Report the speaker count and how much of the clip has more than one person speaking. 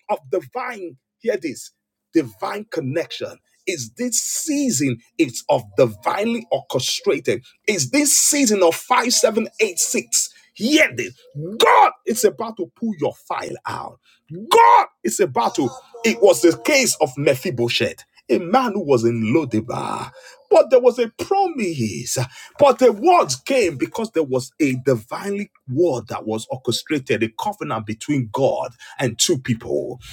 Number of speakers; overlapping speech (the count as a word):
one, no overlap